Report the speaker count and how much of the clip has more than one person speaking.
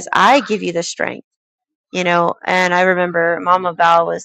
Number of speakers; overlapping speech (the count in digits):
1, no overlap